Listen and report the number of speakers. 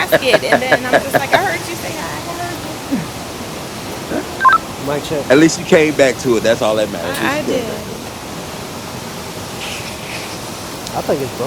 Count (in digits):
3